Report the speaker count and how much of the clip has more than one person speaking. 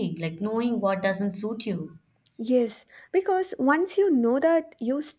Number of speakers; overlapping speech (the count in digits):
2, no overlap